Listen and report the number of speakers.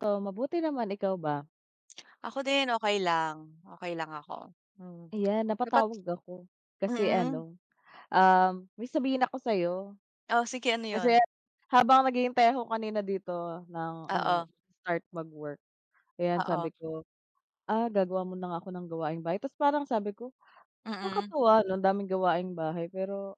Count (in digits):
2